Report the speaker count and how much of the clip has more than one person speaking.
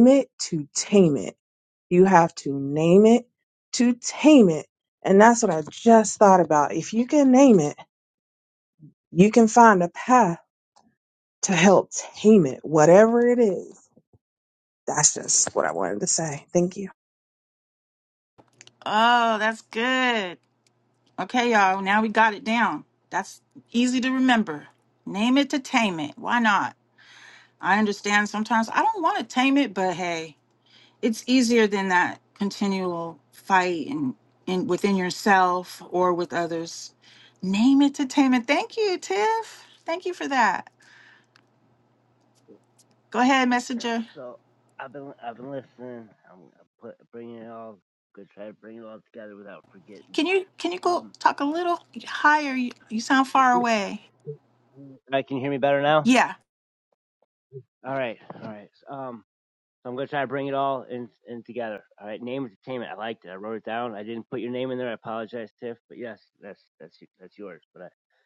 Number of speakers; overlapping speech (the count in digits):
3, about 1%